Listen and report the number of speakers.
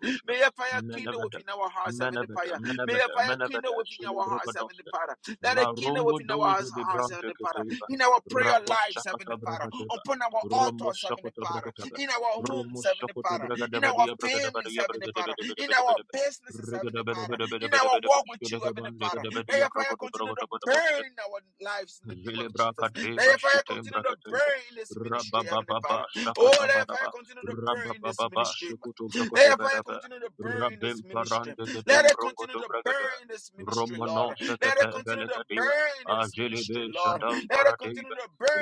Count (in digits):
2